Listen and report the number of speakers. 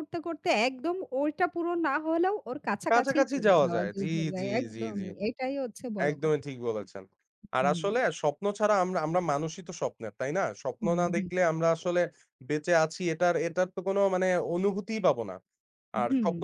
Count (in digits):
2